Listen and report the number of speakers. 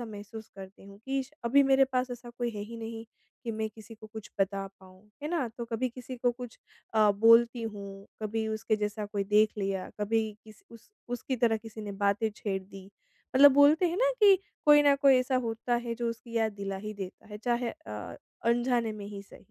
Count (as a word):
one